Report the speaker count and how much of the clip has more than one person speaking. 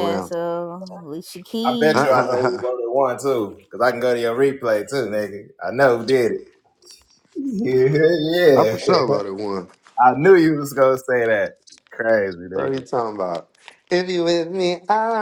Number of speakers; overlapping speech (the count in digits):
3, about 12%